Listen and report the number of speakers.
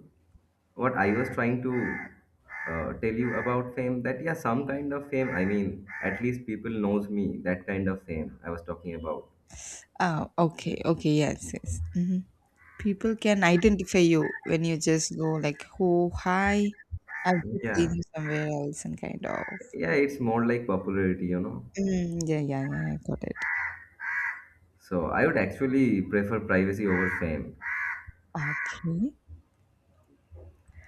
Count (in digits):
2